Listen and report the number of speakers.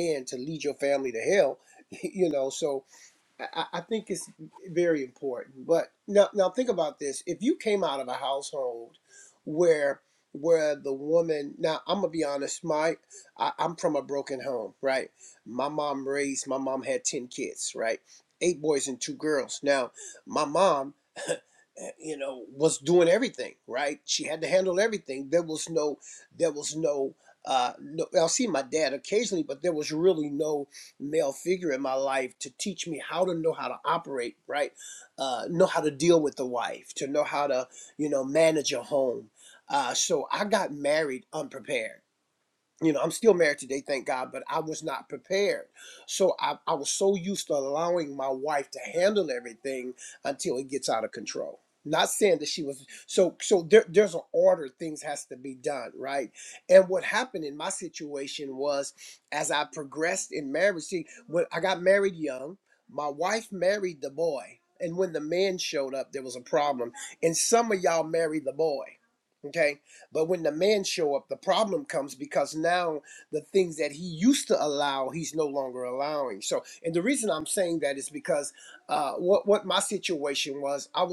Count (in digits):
1